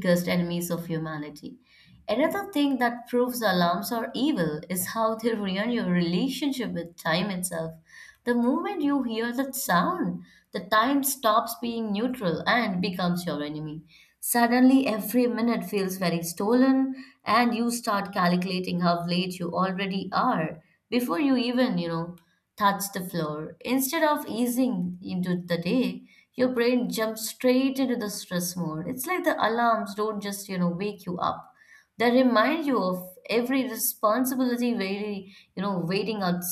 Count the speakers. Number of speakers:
one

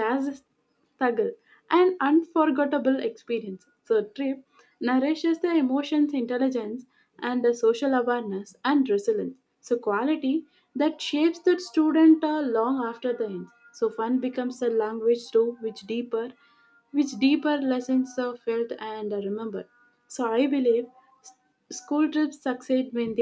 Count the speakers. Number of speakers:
one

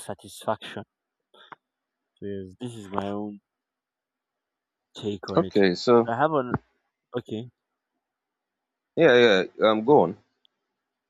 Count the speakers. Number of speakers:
two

